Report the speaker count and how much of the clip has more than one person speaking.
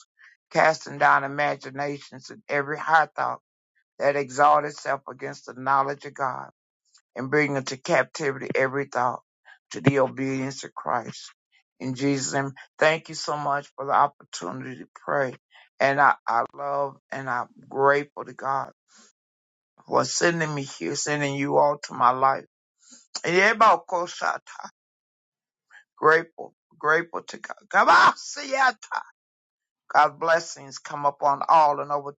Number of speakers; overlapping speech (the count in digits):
1, no overlap